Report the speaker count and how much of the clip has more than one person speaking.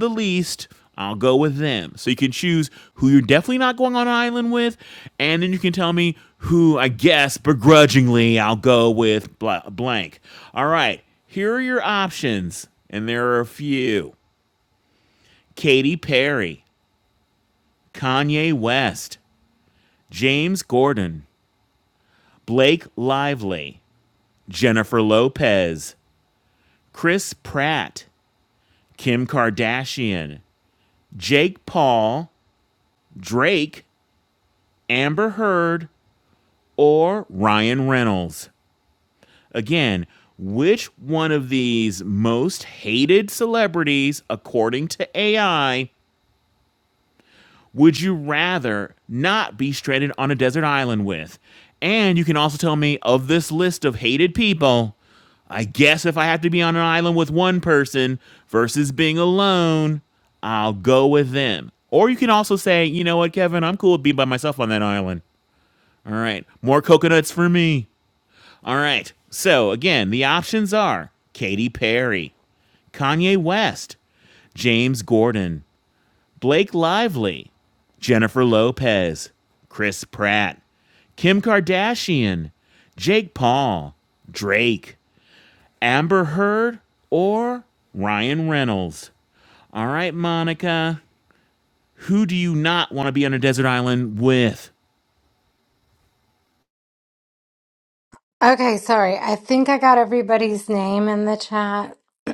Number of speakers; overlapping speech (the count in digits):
2, no overlap